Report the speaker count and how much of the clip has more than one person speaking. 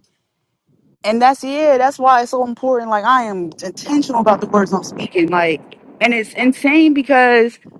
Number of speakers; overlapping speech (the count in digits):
1, no overlap